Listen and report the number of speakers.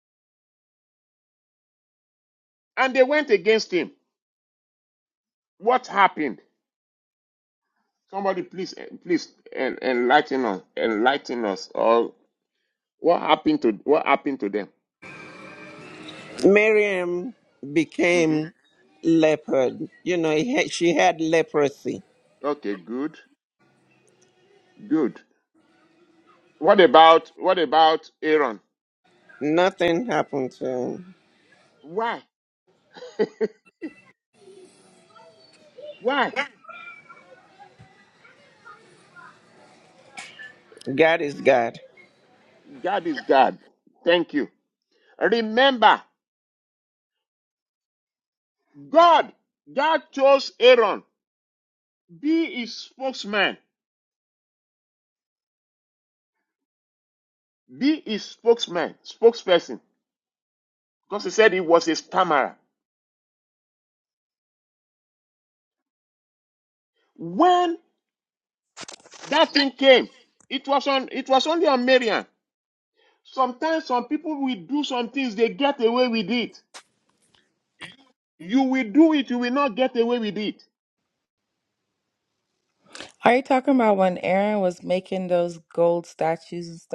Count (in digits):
3